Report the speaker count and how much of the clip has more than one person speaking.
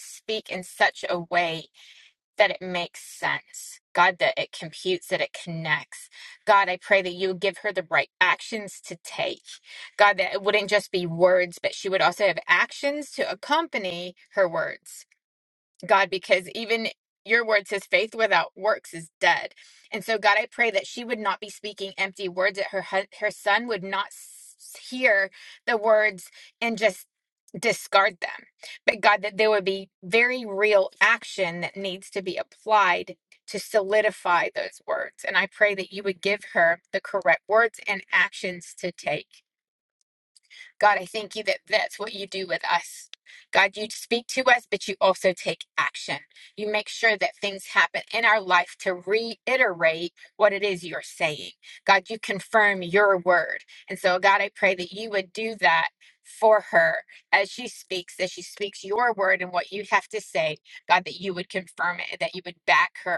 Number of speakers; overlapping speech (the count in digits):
1, no overlap